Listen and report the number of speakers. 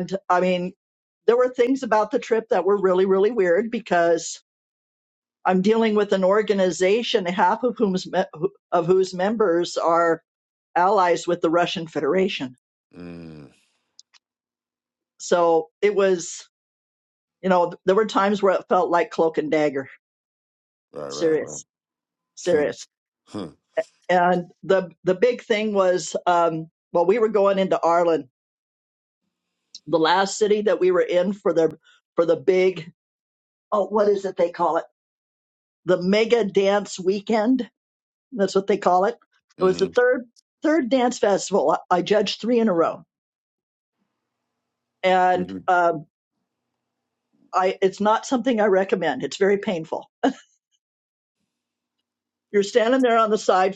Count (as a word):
two